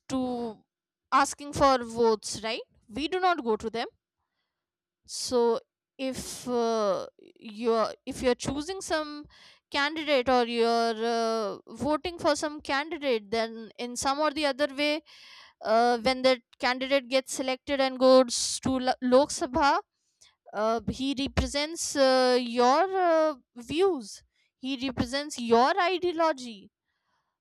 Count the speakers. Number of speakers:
1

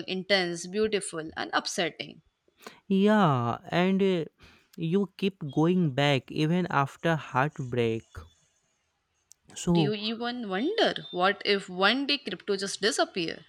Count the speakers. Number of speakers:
2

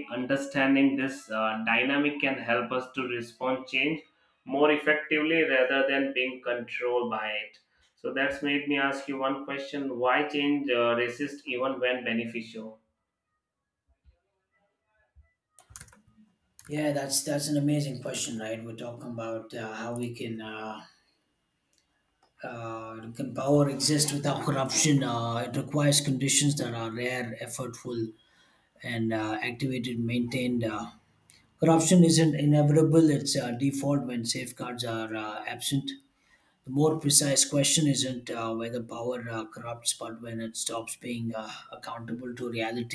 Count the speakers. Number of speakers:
2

